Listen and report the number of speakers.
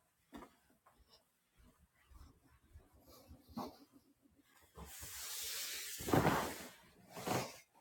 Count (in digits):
0